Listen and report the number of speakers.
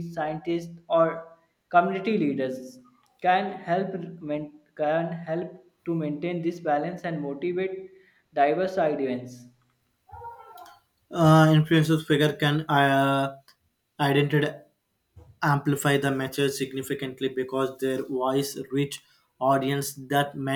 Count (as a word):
two